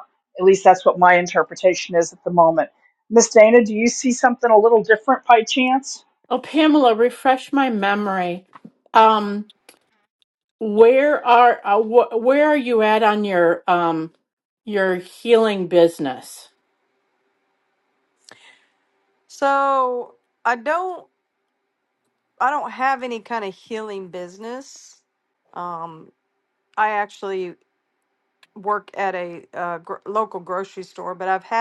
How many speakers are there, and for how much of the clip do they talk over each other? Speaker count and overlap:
3, no overlap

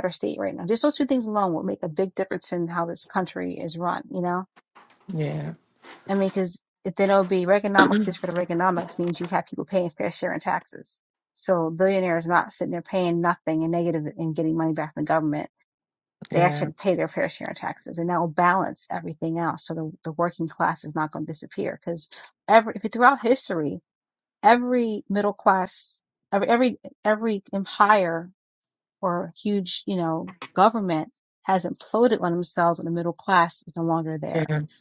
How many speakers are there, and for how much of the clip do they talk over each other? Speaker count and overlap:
2, about 1%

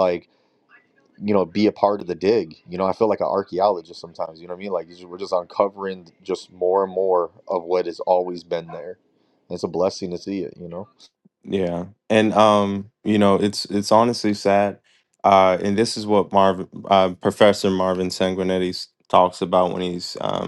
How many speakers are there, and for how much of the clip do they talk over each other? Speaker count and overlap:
2, no overlap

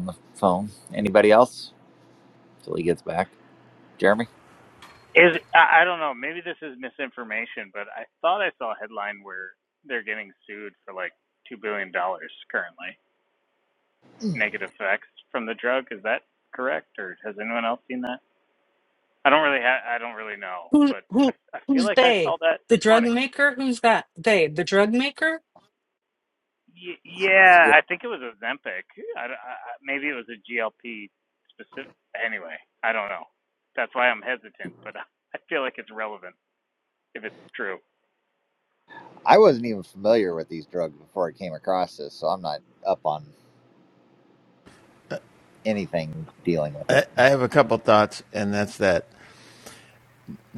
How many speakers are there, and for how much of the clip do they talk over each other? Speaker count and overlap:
4, about 3%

